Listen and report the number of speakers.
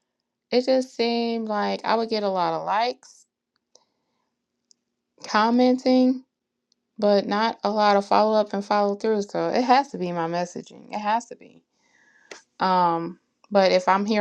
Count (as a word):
one